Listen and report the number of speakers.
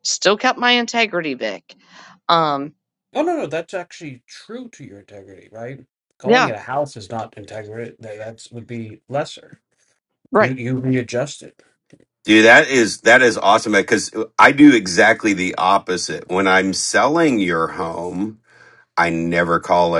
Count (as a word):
three